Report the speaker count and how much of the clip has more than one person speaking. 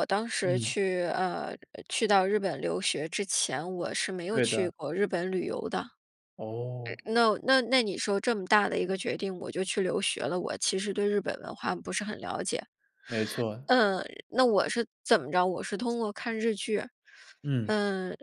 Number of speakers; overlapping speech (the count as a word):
two, about 3%